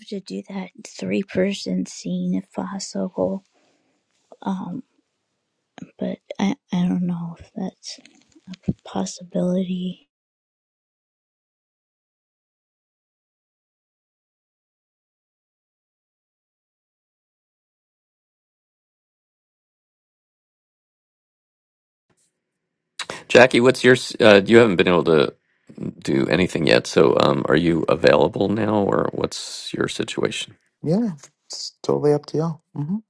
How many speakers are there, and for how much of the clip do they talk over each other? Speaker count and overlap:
3, no overlap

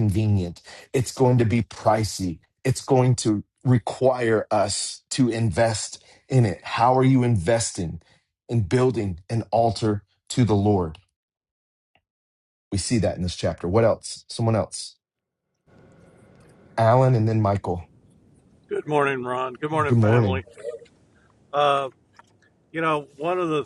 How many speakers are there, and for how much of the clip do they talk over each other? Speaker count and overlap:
2, about 2%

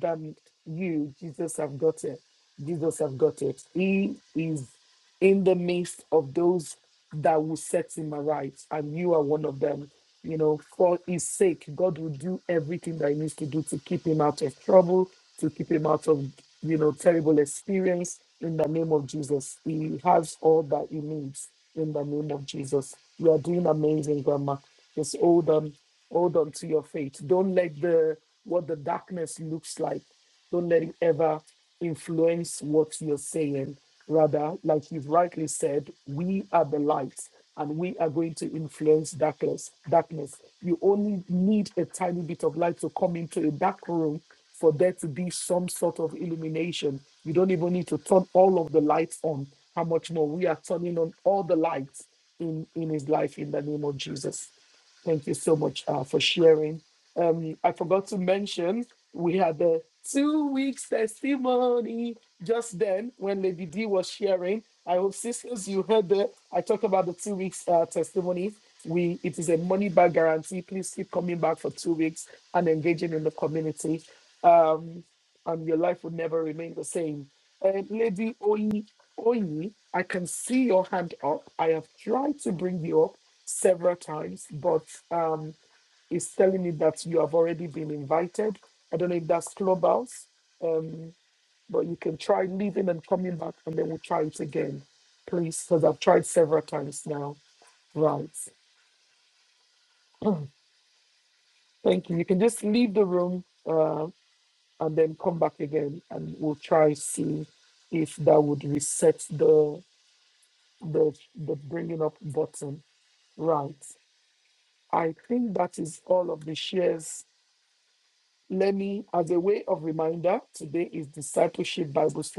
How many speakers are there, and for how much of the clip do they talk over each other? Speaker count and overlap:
1, no overlap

